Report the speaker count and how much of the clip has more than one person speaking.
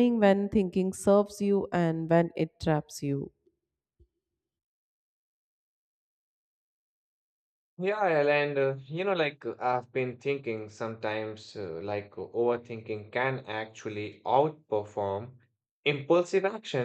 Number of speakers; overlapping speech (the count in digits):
2, no overlap